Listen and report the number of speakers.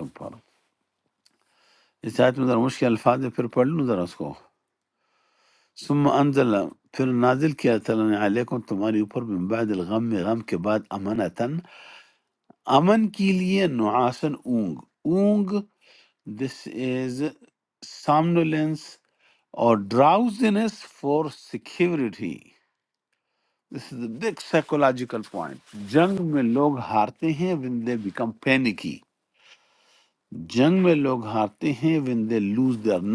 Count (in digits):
1